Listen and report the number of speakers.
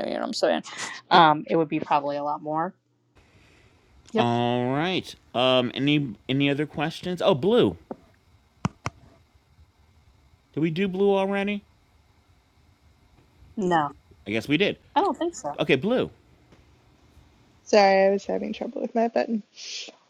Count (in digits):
3